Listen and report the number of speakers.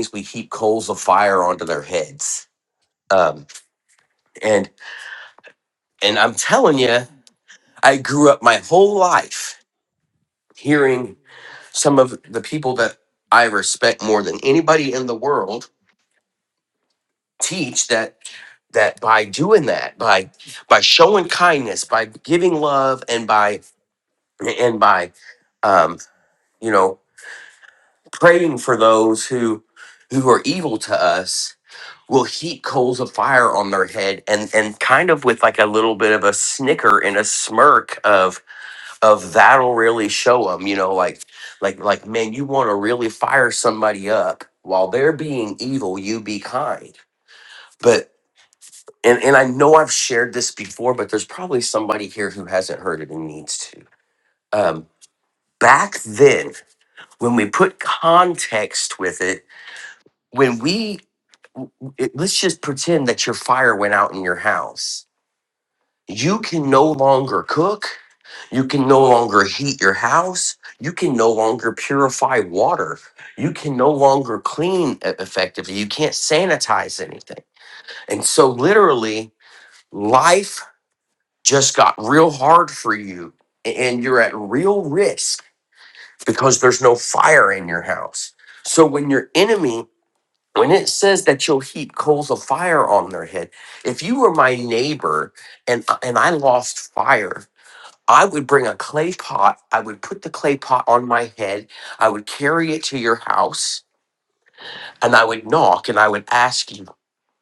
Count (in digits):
1